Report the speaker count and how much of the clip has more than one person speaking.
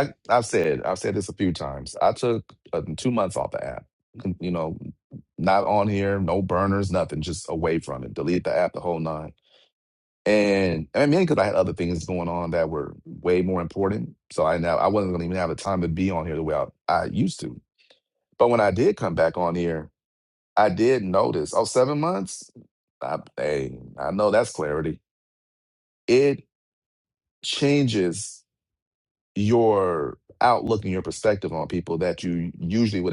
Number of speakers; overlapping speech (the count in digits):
1, no overlap